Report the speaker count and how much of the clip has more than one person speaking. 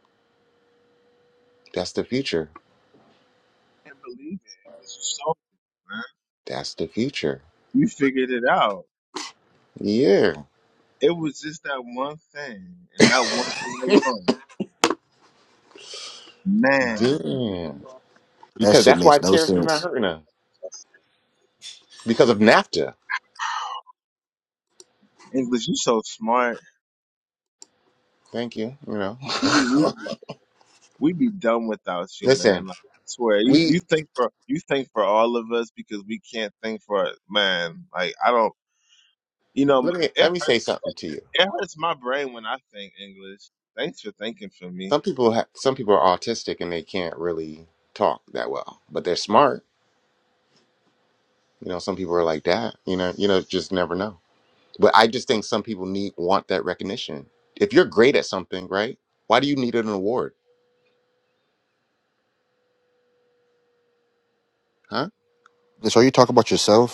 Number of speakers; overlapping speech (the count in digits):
3, about 4%